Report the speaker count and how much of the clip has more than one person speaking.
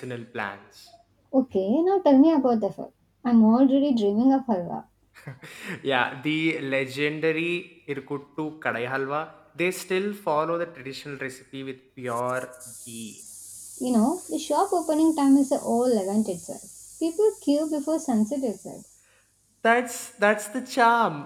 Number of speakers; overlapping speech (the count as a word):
two, no overlap